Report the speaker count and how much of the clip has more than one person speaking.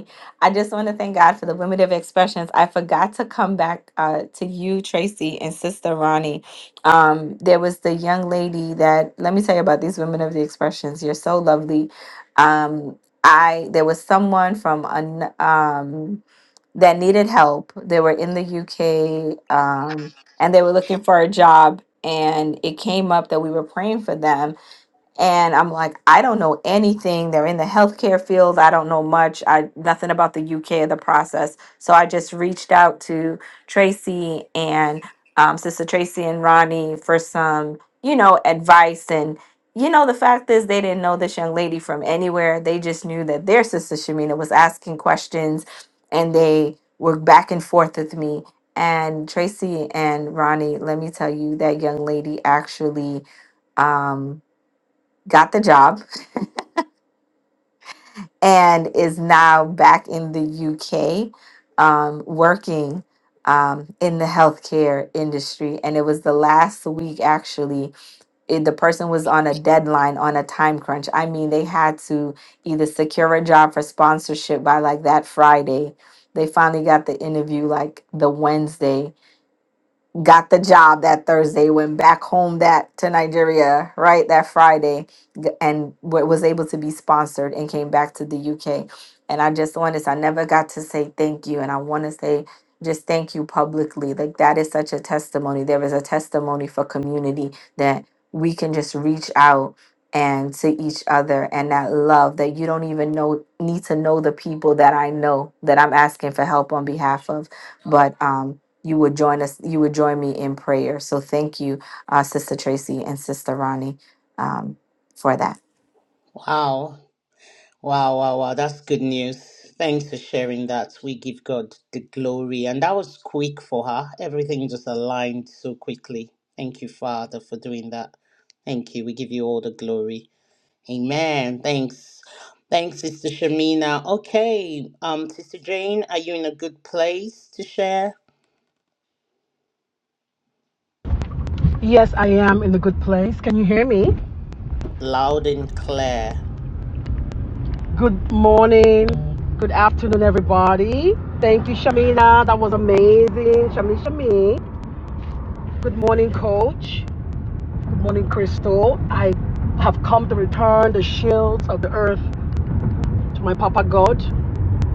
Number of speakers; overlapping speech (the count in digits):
3, no overlap